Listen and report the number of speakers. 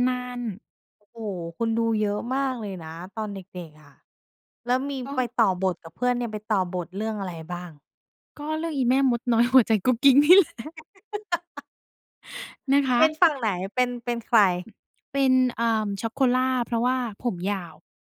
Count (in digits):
2